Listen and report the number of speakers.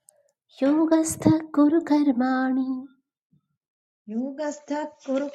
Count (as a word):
two